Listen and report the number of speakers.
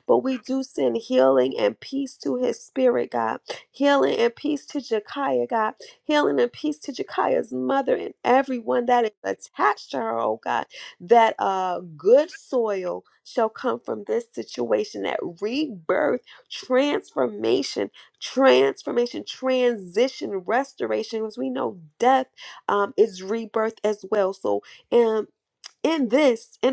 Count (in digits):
1